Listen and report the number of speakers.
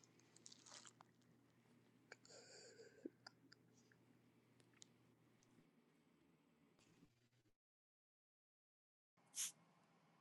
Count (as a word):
zero